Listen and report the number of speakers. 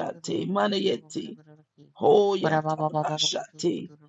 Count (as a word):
one